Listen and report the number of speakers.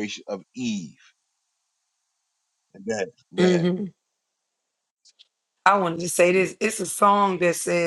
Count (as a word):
two